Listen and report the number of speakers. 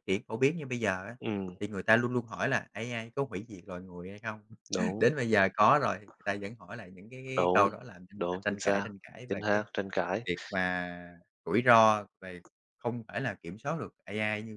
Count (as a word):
two